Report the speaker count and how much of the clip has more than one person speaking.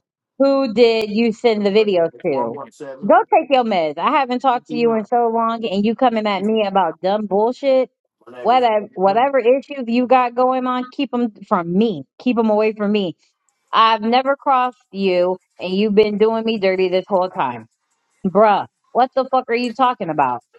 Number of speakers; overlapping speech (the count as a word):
one, no overlap